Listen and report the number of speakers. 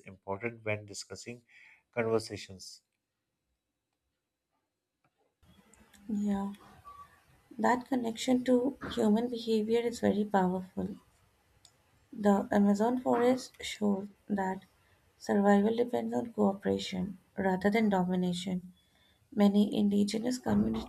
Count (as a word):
two